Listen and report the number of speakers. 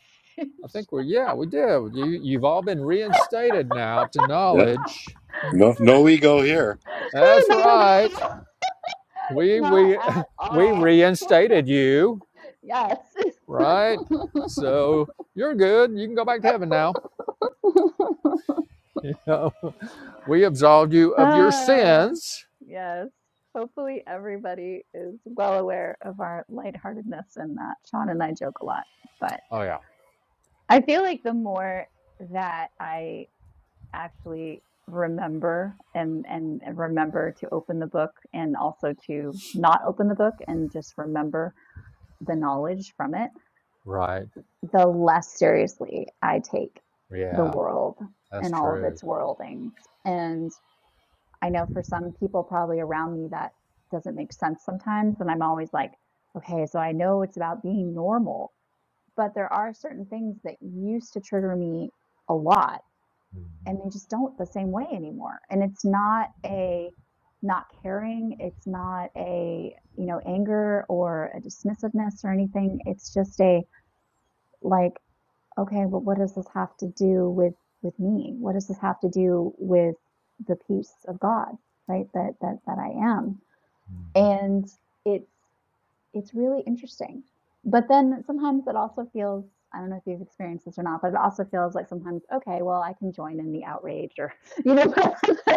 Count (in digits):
3